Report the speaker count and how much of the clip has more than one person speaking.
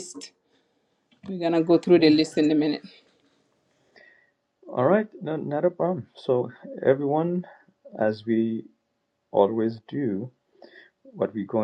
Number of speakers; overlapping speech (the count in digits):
2, about 2%